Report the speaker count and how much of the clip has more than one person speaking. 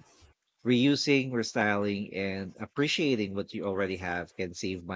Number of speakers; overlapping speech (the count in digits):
1, no overlap